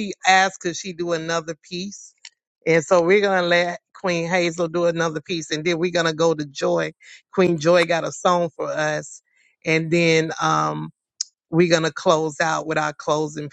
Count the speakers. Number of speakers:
1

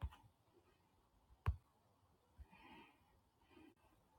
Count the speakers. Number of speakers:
0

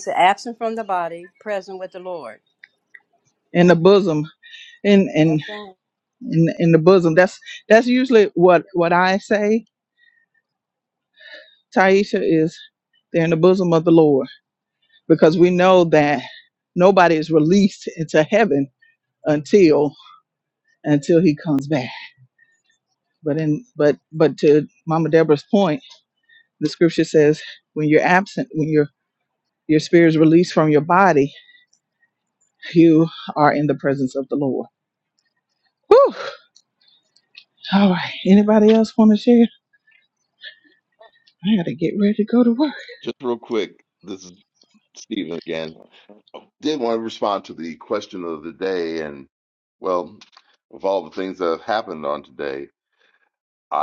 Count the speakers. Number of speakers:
3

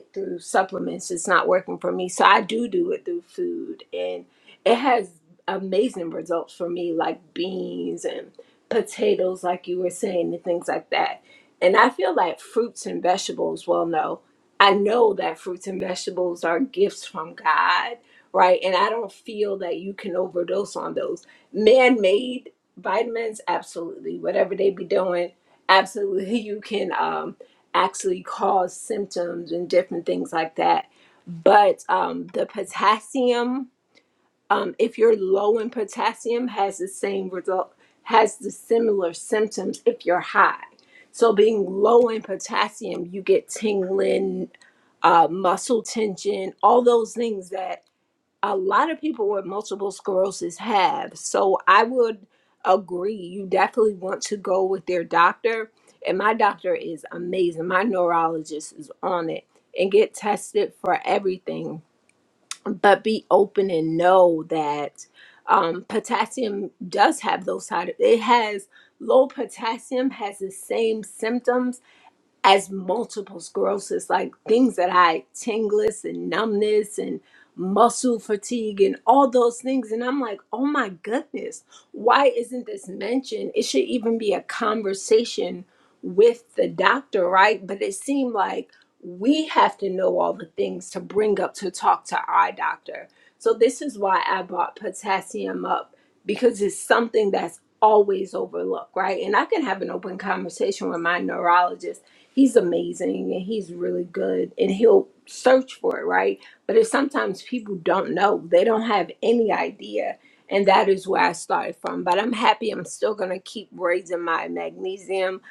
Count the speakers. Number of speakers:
1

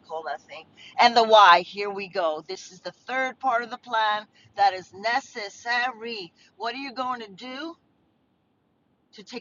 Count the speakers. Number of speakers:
1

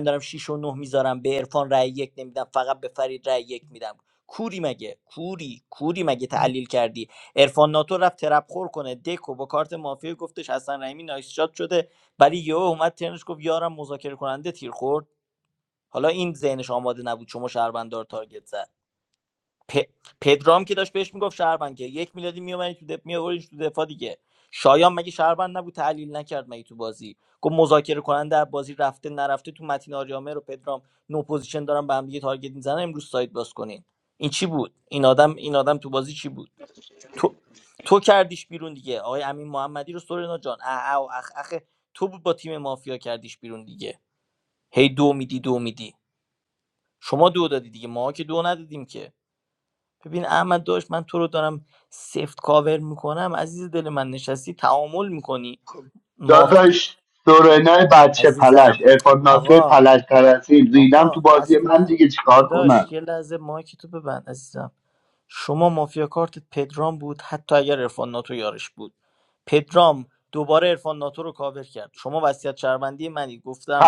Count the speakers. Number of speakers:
2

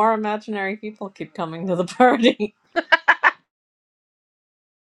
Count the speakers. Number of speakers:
1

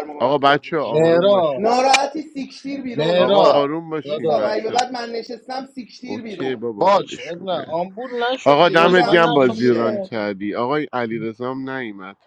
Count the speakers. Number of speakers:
3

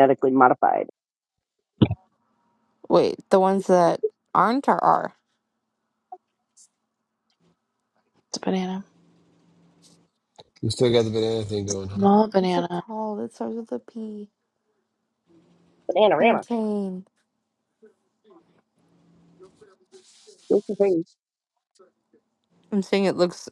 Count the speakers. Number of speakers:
4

